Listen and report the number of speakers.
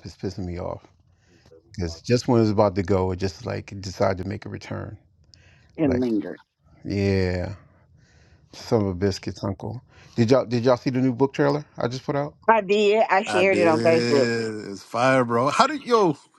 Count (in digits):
3